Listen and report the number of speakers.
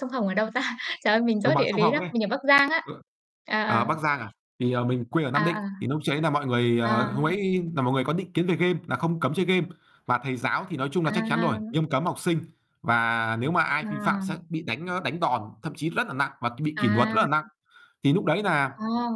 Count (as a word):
two